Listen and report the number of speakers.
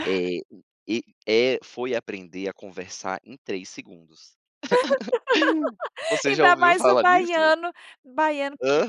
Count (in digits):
2